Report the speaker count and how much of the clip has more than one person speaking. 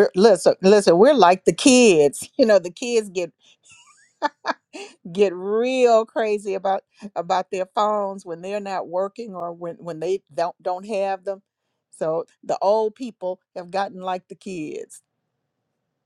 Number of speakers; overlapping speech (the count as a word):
one, no overlap